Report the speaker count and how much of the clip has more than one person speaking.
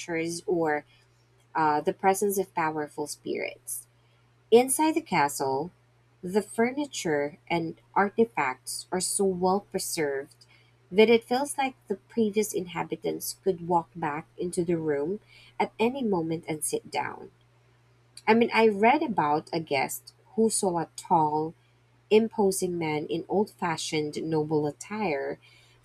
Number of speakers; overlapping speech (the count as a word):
one, no overlap